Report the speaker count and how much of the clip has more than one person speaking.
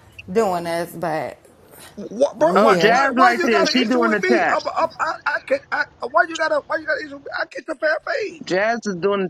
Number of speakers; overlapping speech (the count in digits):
3, about 23%